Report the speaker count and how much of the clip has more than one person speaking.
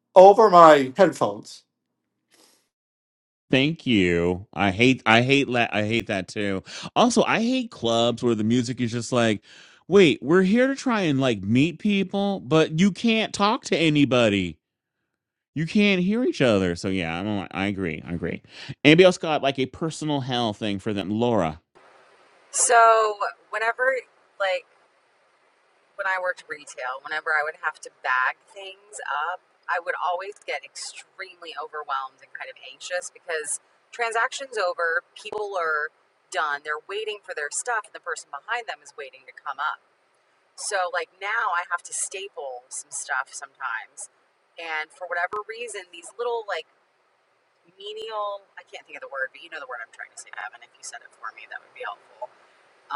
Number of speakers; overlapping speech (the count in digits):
3, no overlap